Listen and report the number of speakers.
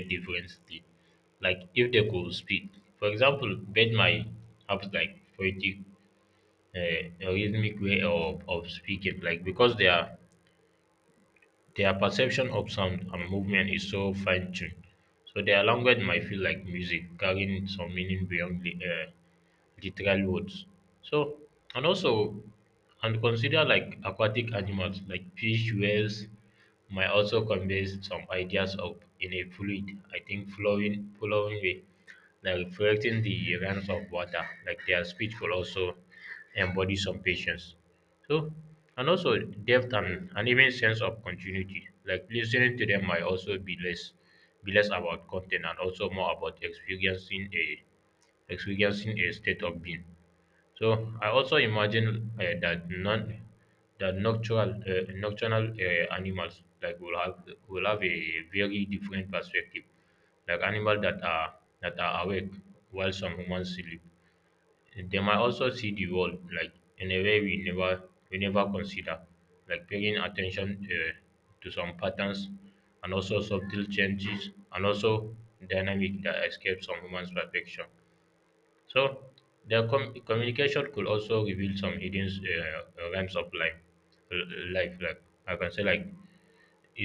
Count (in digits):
1